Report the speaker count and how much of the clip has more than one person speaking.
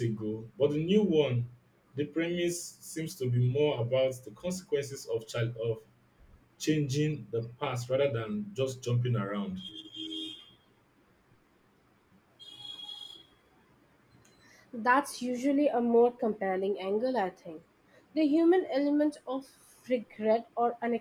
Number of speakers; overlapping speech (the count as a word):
two, no overlap